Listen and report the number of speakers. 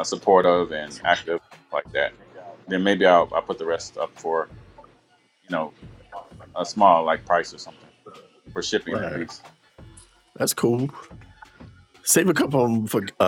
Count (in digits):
2